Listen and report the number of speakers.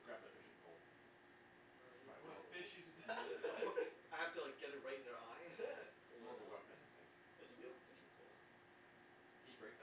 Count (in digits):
3